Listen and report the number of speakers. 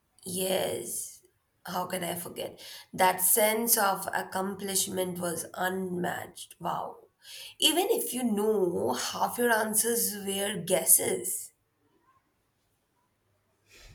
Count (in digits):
1